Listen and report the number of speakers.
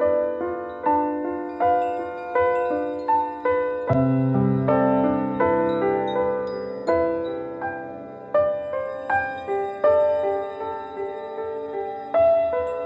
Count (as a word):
zero